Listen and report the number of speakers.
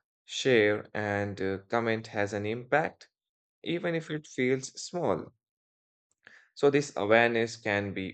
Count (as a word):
one